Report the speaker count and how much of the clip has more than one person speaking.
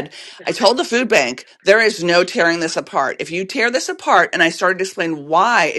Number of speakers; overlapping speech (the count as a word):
one, no overlap